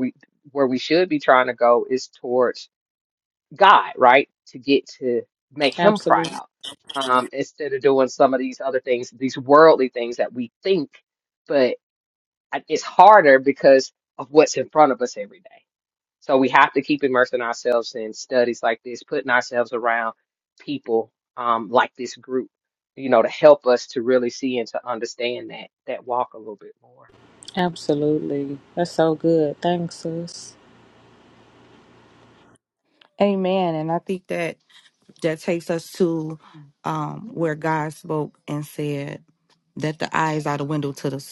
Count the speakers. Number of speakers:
three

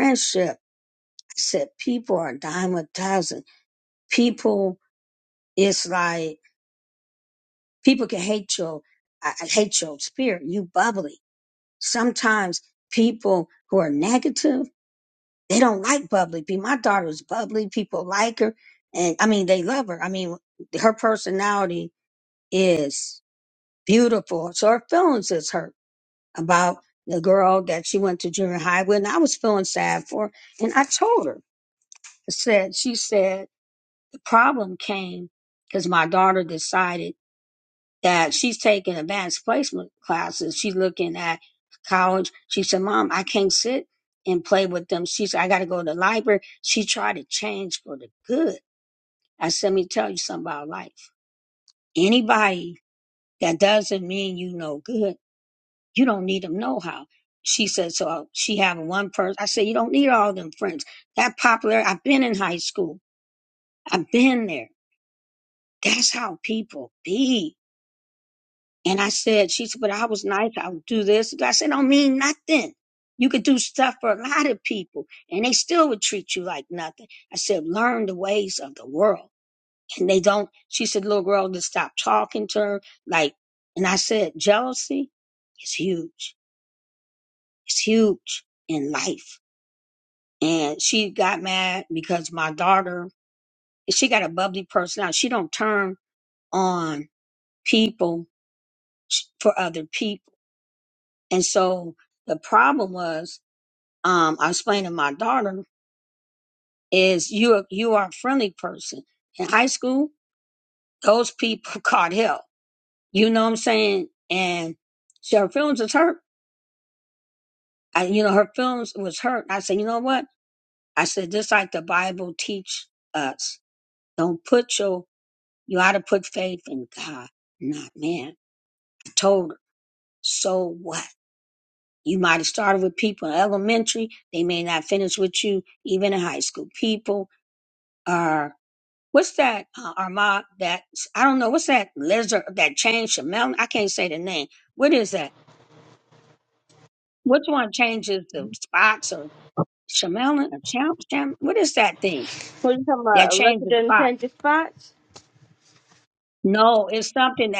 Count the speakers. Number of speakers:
two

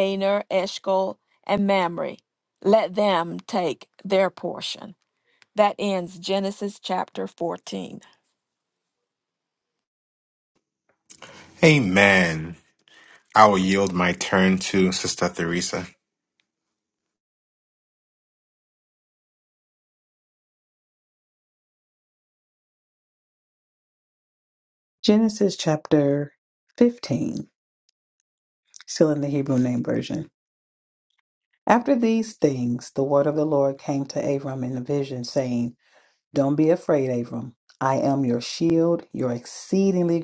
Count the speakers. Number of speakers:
three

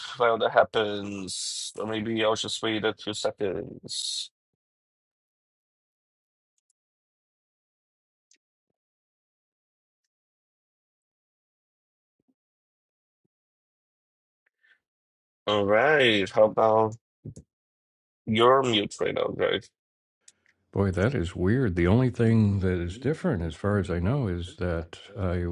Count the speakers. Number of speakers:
two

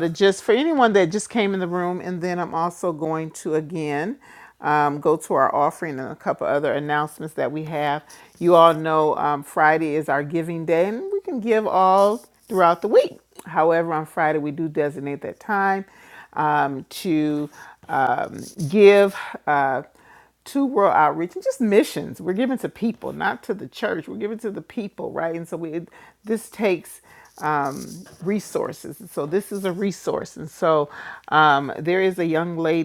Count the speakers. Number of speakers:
one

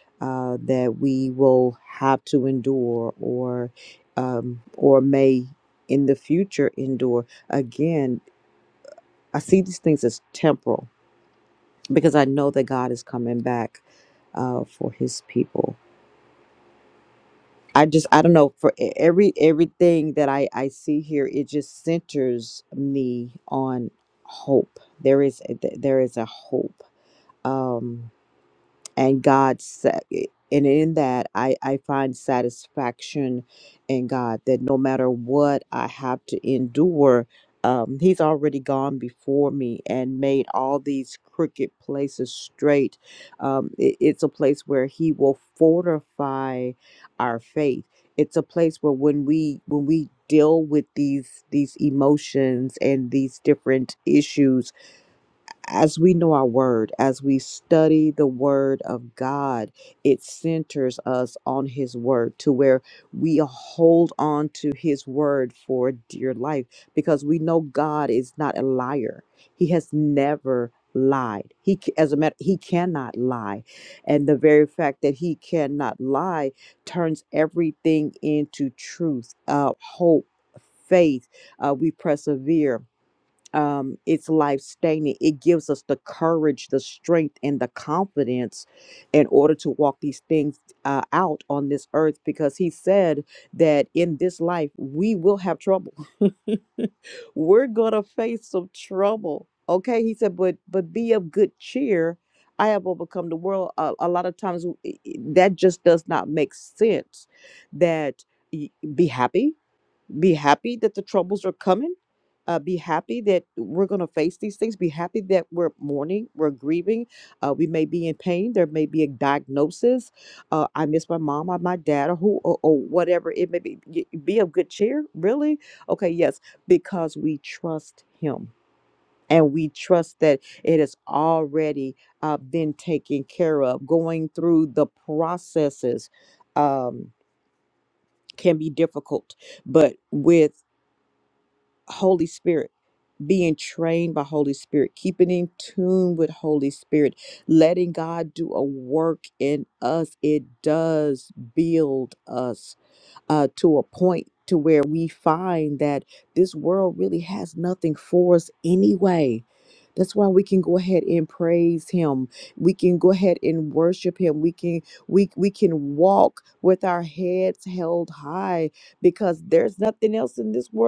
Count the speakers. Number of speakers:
one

